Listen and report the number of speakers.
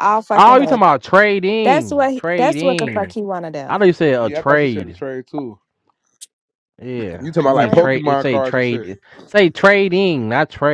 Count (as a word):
three